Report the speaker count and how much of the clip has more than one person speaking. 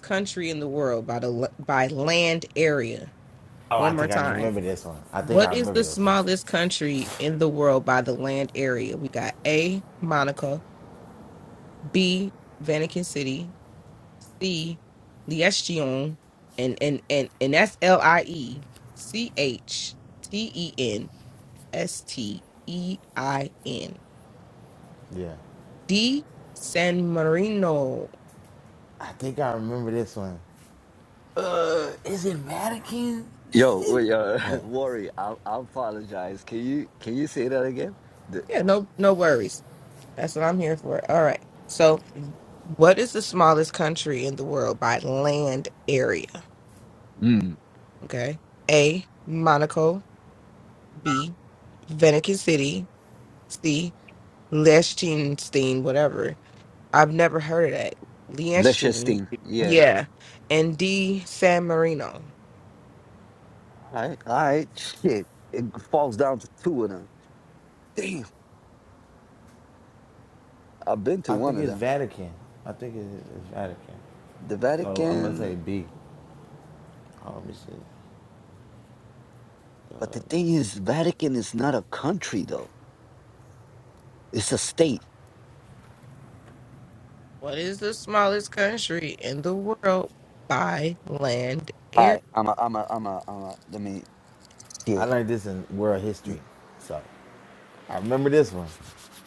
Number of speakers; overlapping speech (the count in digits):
3, about 5%